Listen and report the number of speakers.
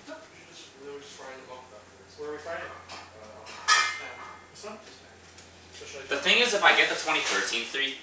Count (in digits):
3